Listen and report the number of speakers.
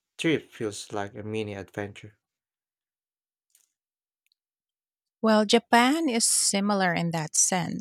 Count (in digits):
2